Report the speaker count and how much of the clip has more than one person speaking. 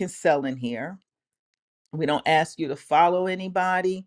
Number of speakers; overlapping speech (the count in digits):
1, no overlap